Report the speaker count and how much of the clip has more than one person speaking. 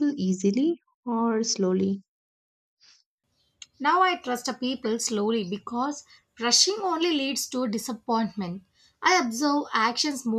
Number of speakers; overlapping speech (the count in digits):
2, no overlap